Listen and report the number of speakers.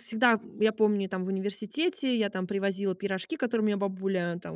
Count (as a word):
one